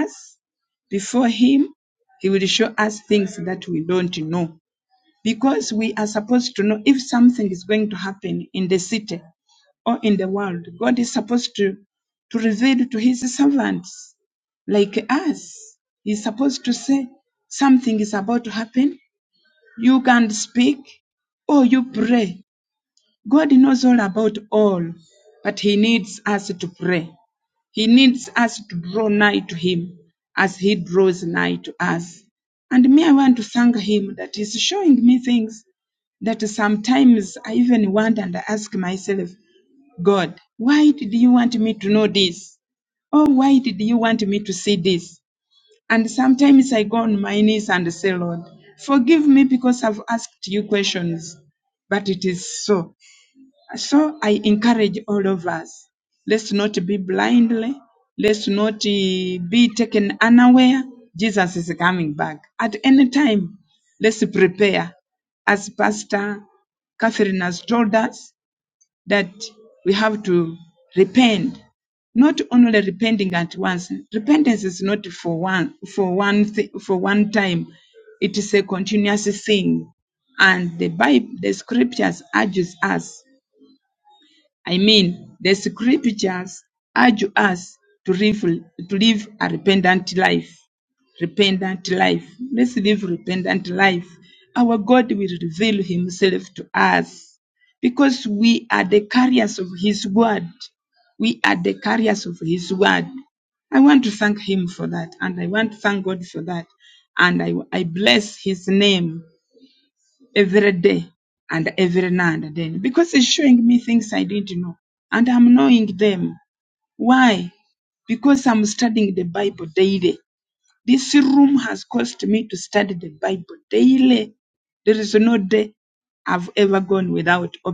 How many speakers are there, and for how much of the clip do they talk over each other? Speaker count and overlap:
1, no overlap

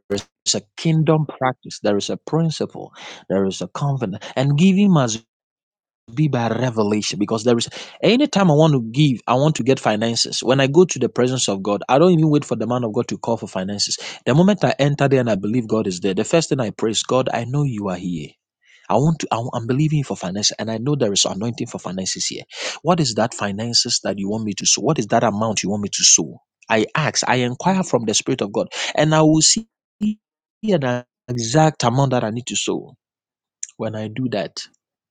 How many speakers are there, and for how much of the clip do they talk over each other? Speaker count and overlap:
1, no overlap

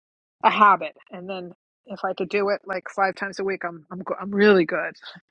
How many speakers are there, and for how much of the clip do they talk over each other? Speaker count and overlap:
1, no overlap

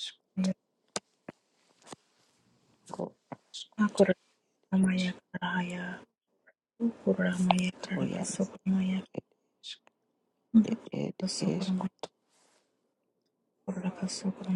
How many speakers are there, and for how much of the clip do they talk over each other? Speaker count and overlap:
2, about 8%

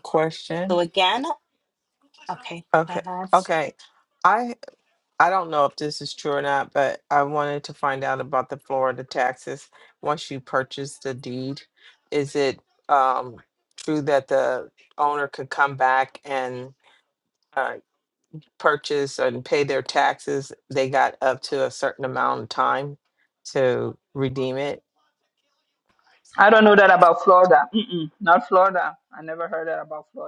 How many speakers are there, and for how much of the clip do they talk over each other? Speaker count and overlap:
3, about 1%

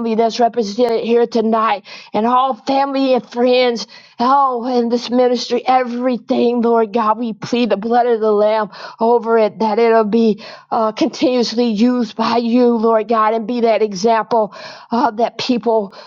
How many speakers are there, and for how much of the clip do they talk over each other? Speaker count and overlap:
1, no overlap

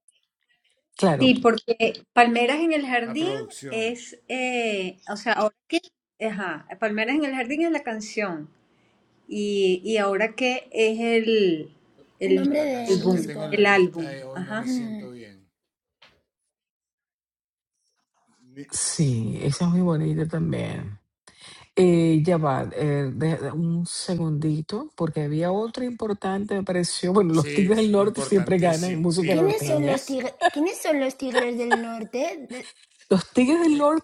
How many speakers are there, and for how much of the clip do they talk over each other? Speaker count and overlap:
3, about 5%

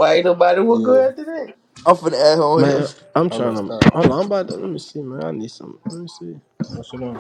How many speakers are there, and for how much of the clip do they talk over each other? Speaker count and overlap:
4, about 17%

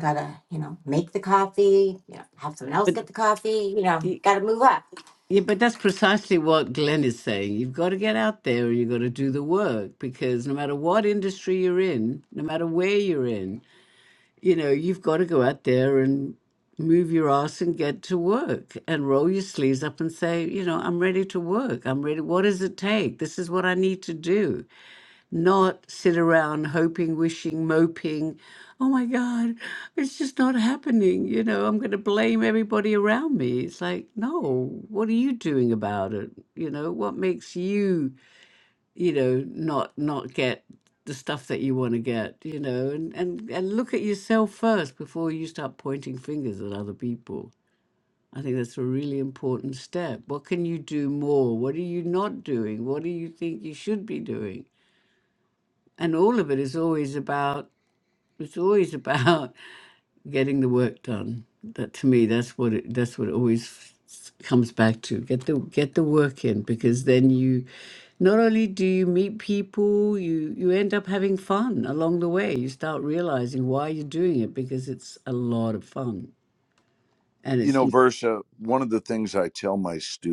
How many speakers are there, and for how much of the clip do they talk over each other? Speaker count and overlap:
3, under 1%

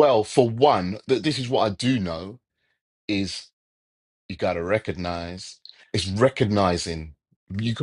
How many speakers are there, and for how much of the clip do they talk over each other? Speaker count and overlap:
1, no overlap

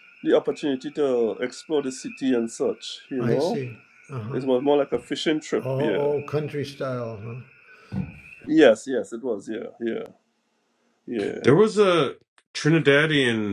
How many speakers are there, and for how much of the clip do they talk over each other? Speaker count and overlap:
3, about 8%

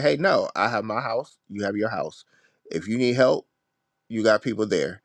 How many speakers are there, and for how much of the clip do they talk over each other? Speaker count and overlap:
1, no overlap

